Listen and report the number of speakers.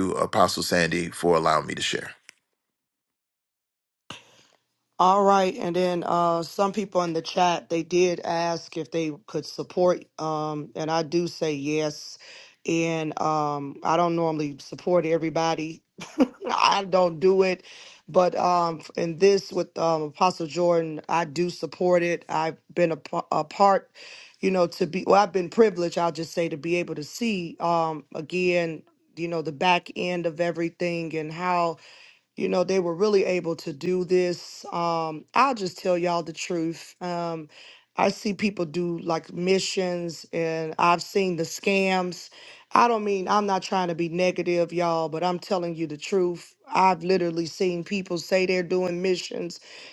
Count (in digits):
2